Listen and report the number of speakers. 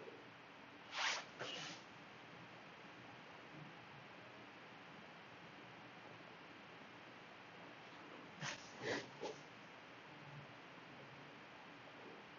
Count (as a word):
zero